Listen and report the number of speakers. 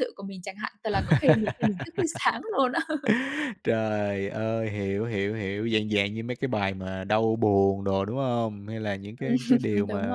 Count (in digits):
2